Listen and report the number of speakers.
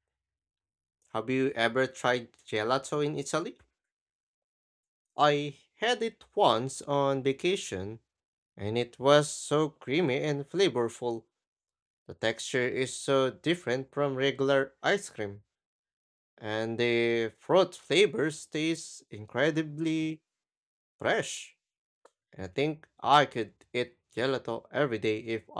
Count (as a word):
one